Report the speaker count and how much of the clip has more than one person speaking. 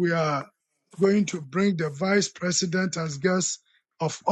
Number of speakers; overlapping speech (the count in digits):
1, no overlap